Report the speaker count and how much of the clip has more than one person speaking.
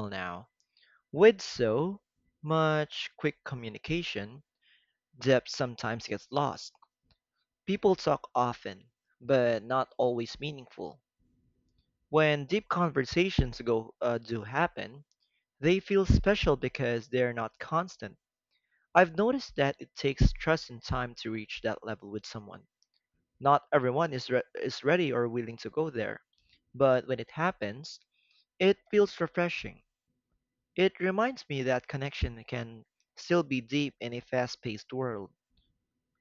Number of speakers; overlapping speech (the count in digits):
1, no overlap